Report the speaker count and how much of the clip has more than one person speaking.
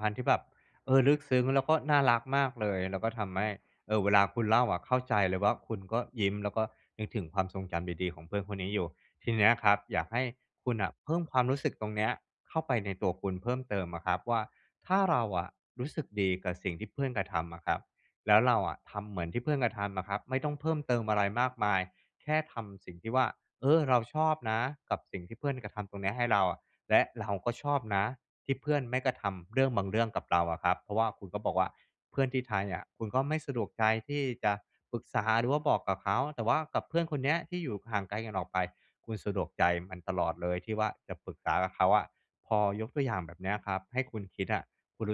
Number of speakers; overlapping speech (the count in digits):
1, no overlap